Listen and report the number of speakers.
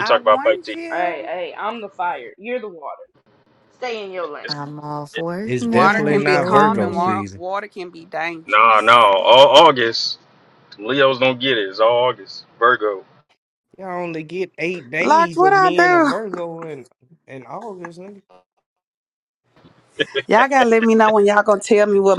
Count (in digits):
5